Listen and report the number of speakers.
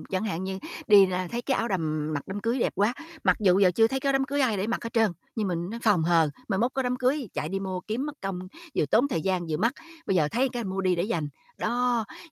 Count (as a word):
one